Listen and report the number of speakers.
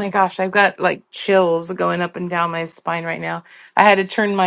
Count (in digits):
1